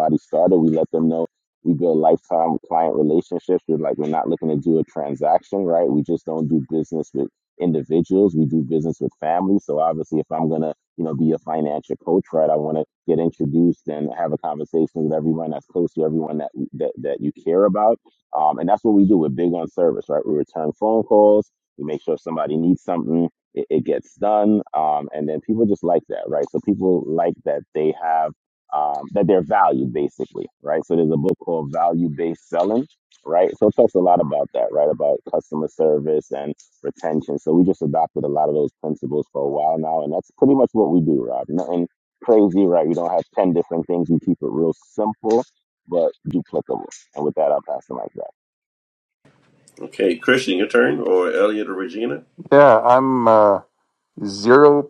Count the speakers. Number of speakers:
3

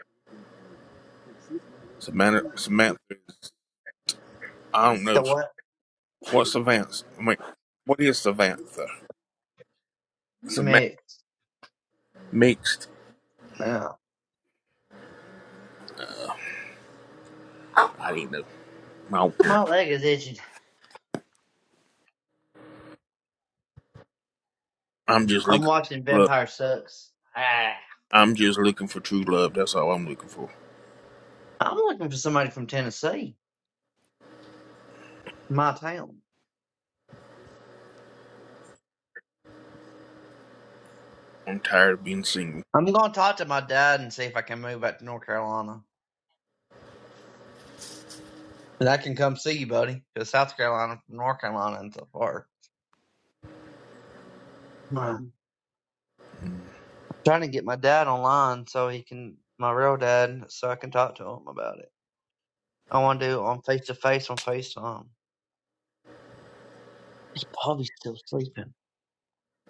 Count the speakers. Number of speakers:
2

